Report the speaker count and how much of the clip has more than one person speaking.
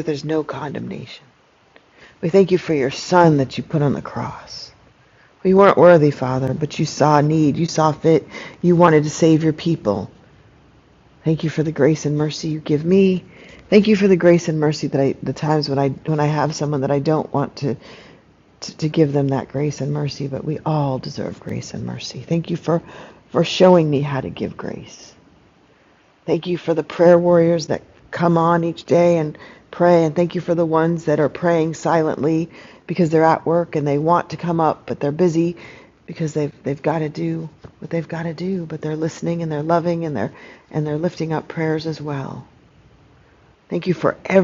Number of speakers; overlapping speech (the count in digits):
1, no overlap